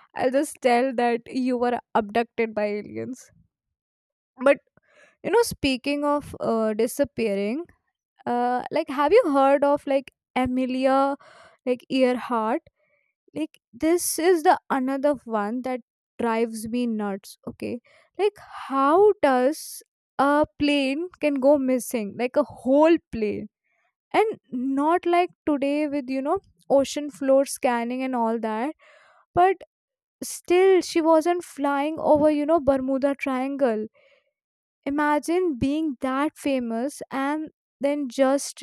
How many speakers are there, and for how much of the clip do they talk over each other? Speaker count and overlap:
1, no overlap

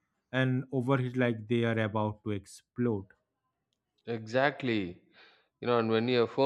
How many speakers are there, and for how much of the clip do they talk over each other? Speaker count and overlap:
2, no overlap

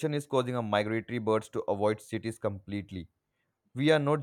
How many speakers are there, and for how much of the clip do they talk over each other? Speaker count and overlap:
1, no overlap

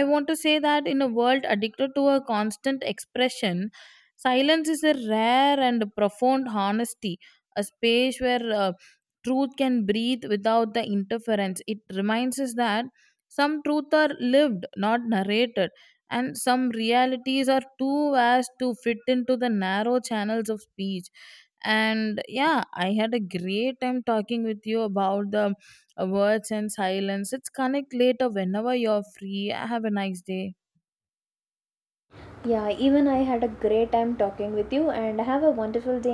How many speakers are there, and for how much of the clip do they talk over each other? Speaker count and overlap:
2, no overlap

